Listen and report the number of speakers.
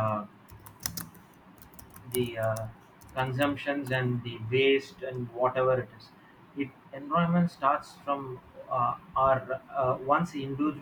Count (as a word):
one